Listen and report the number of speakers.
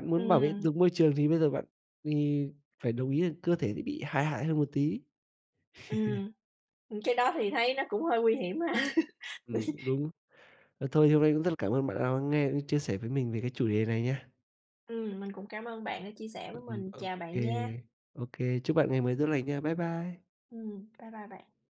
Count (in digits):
2